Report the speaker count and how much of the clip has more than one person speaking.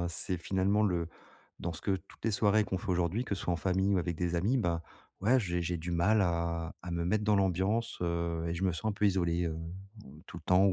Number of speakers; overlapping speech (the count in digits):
1, no overlap